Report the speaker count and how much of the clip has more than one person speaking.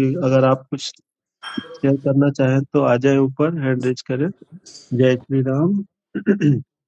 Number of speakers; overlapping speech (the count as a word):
one, no overlap